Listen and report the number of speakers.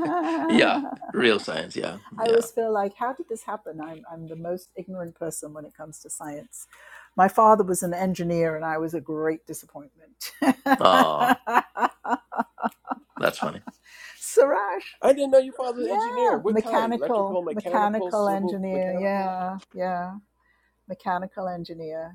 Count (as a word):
three